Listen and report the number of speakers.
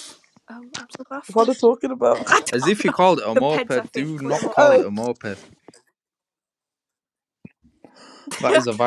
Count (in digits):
3